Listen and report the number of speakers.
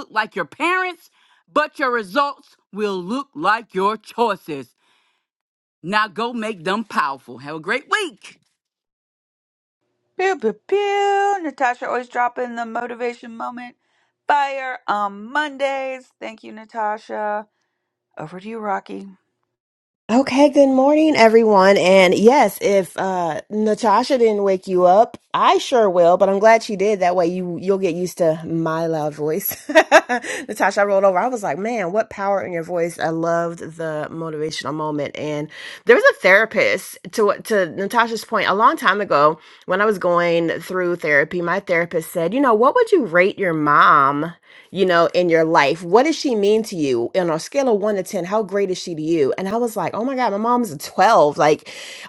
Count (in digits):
3